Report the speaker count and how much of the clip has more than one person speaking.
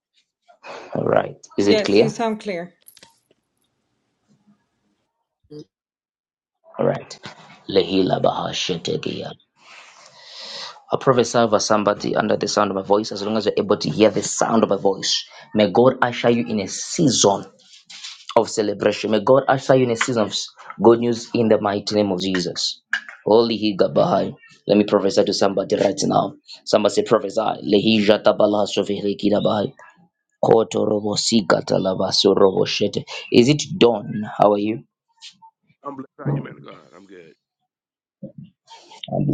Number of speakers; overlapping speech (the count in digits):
3, about 1%